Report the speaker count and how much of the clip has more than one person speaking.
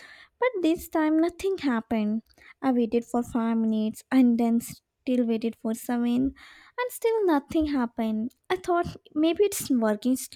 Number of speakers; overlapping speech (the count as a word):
one, no overlap